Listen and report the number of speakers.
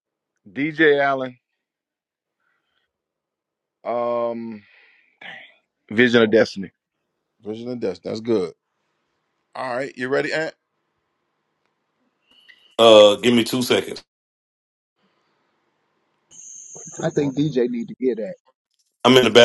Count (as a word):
four